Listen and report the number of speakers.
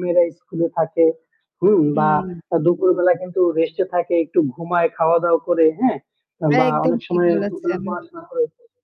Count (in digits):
2